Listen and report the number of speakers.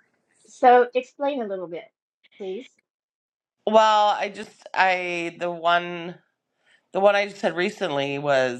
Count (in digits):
2